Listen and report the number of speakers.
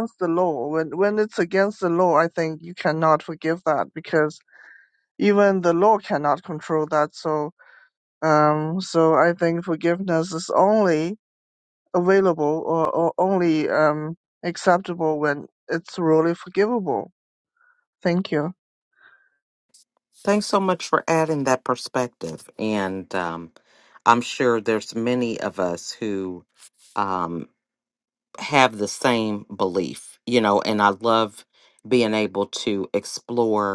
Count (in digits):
2